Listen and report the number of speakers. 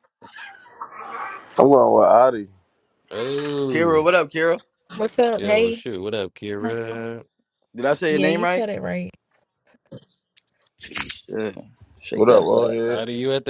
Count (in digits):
4